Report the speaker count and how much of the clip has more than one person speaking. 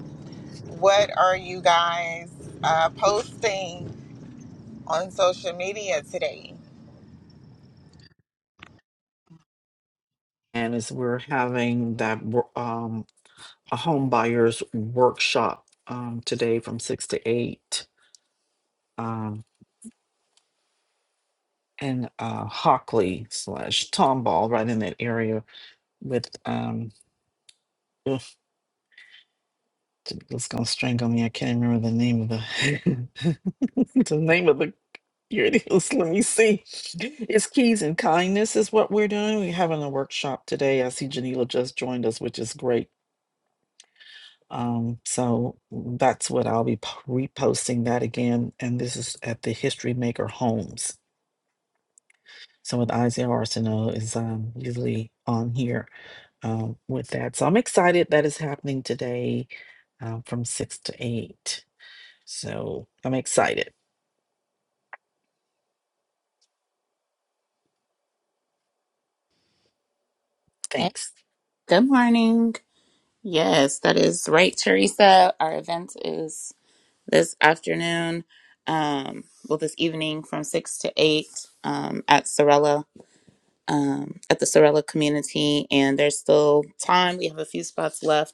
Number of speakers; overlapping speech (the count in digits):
3, under 1%